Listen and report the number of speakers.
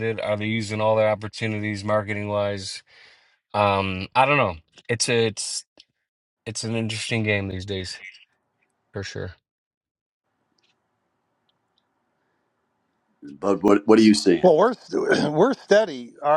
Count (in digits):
3